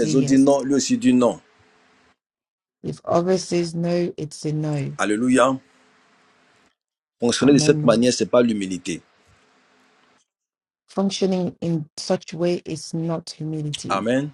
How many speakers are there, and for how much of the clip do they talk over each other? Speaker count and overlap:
two, about 8%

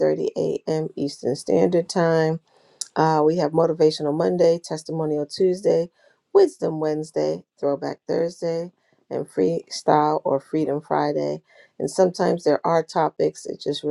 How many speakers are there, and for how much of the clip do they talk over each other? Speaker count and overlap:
one, no overlap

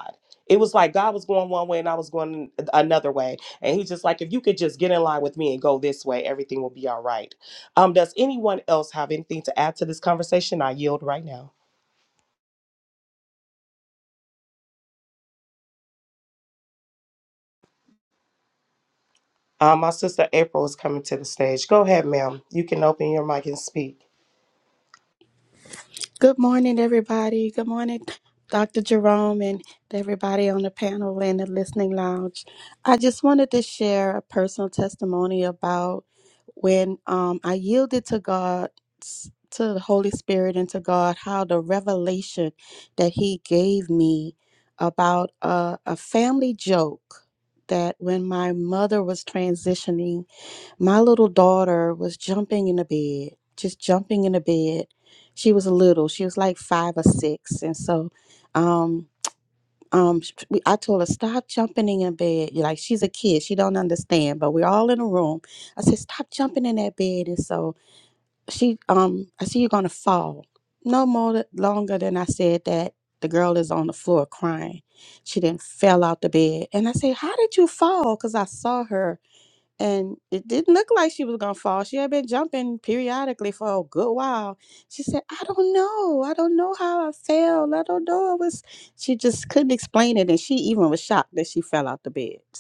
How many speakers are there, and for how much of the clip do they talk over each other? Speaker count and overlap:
two, no overlap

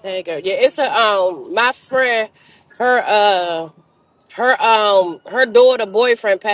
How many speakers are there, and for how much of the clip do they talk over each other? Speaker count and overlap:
one, no overlap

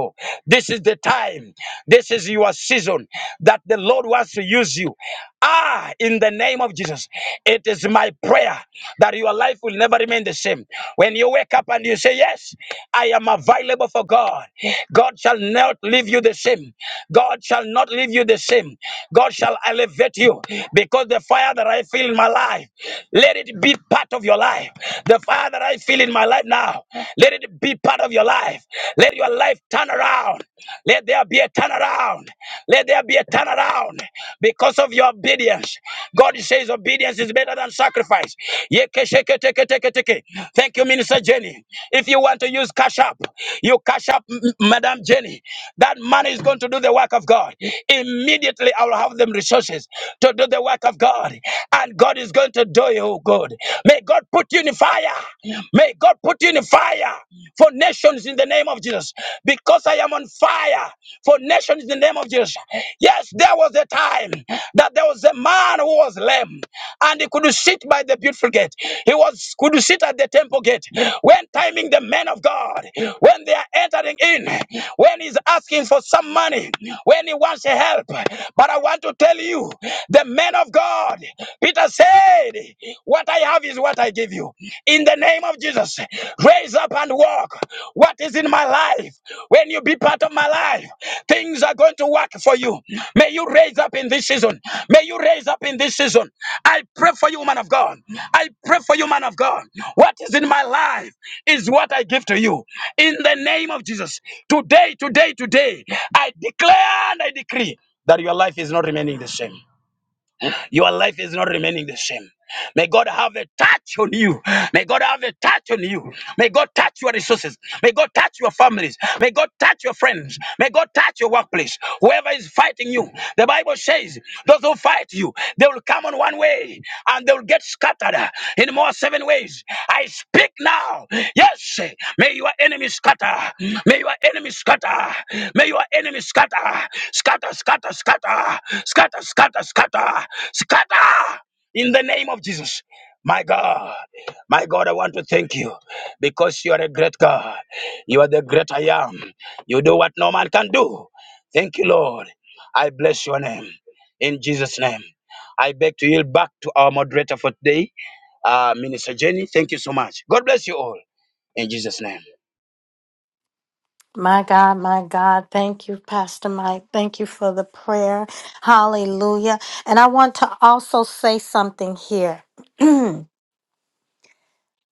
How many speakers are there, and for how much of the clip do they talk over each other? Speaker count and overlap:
two, no overlap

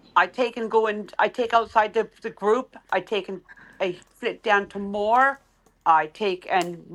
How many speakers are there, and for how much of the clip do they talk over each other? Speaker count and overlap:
one, no overlap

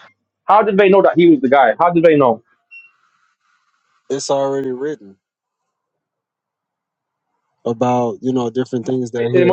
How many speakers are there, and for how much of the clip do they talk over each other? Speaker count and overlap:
two, about 2%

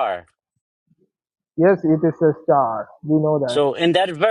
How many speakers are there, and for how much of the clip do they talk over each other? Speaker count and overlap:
two, about 2%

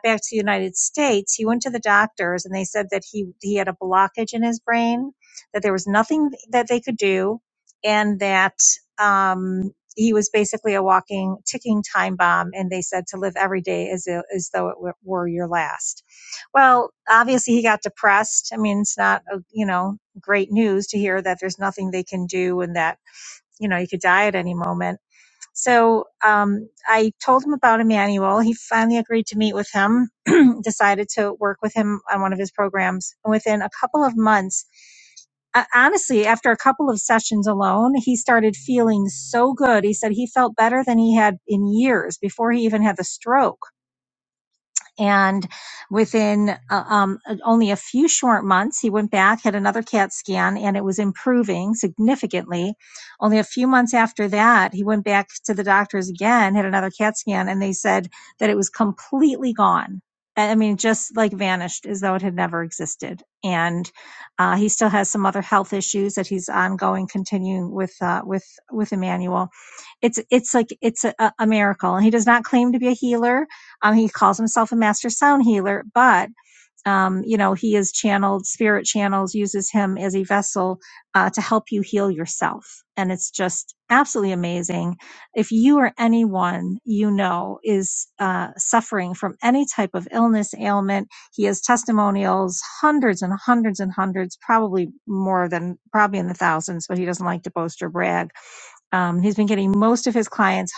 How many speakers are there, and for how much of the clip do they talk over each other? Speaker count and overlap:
one, no overlap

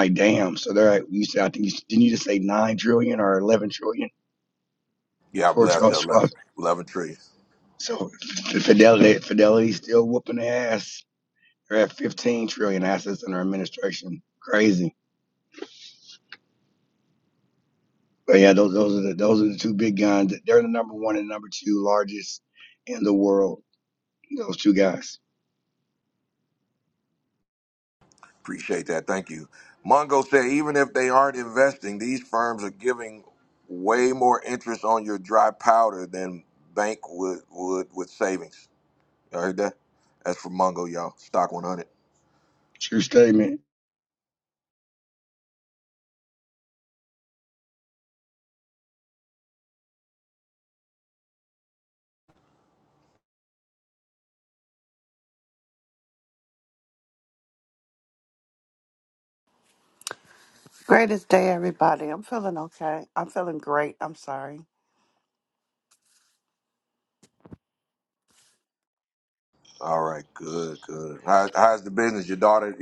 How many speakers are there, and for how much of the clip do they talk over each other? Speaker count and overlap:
three, about 1%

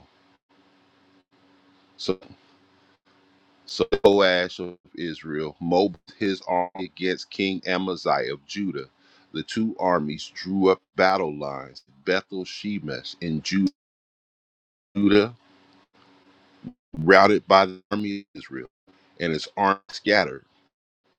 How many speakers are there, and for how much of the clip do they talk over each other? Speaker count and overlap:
one, no overlap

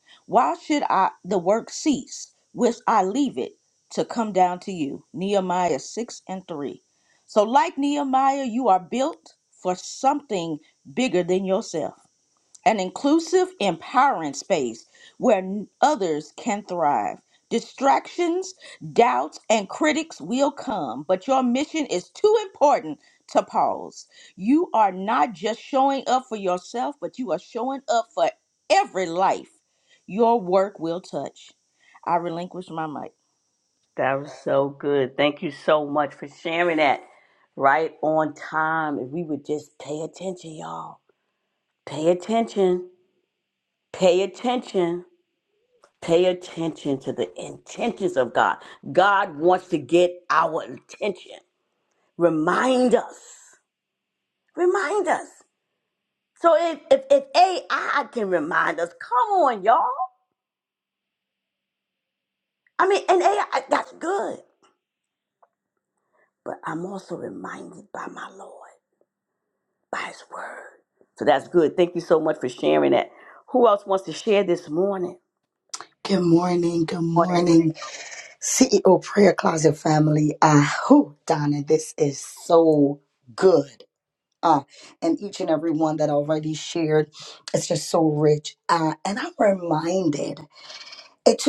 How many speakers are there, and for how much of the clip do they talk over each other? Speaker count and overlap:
three, under 1%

